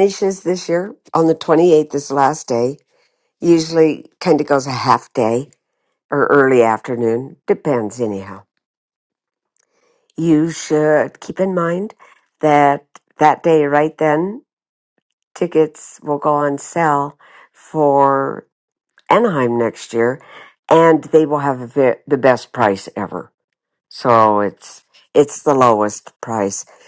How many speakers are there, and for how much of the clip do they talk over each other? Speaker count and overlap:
1, no overlap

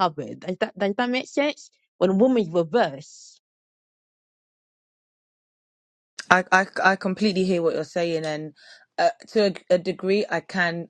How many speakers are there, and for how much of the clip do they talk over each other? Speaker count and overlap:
2, no overlap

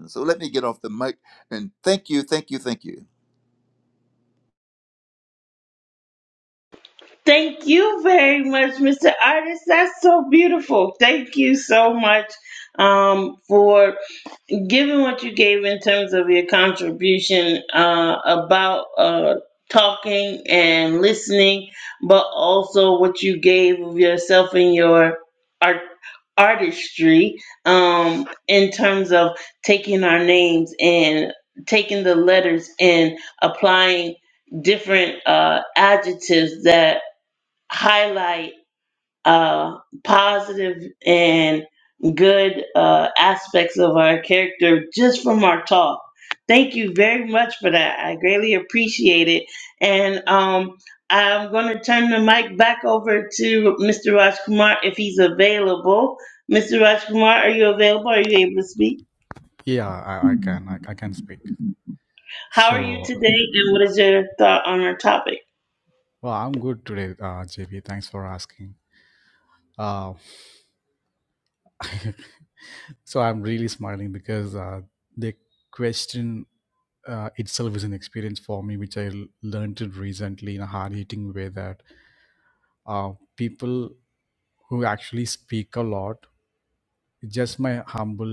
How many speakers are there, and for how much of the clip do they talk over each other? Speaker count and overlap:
3, about 1%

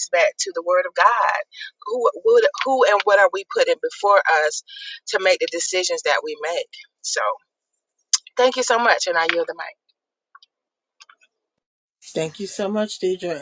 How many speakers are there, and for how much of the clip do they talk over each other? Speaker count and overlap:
2, no overlap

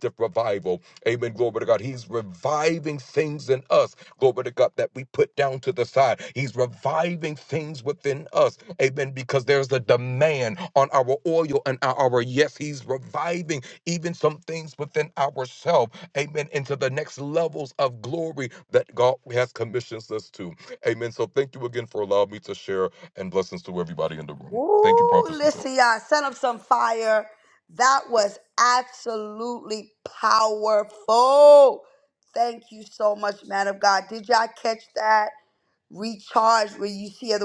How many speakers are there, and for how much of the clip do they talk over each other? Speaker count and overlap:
2, about 2%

